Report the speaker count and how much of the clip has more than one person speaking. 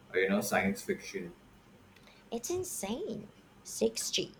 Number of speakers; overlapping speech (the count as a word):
two, no overlap